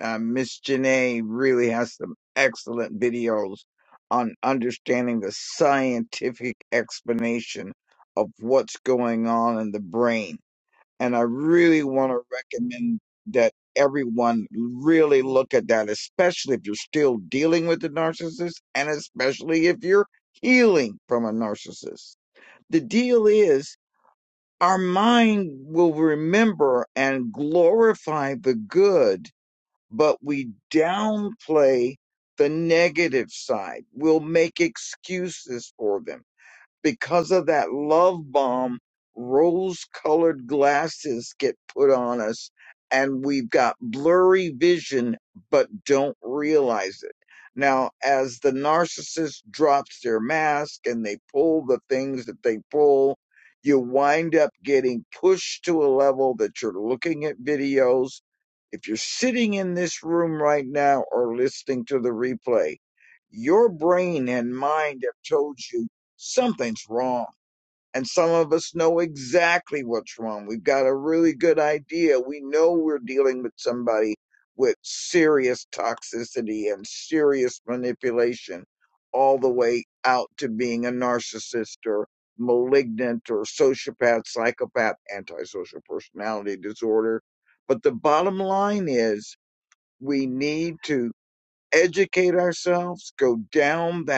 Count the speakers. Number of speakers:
1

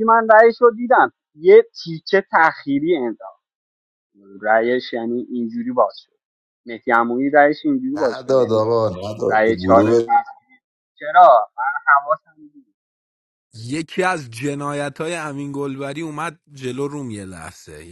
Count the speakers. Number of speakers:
3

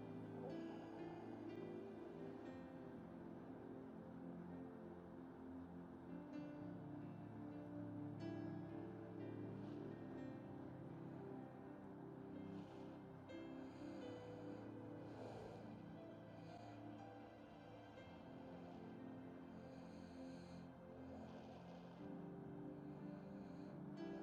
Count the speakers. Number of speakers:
0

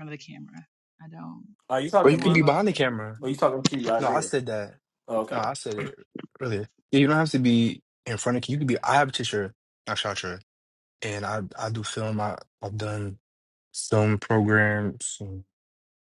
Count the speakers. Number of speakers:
3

